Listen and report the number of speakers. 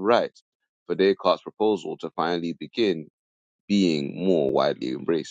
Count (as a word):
one